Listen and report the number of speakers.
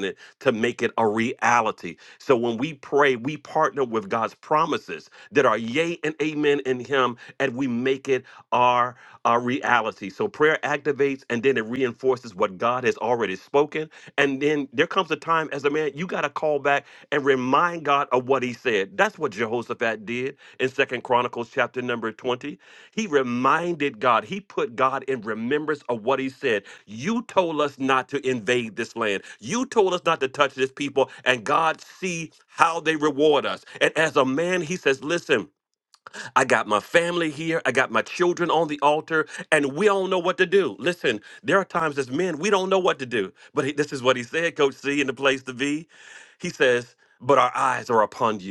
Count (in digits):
1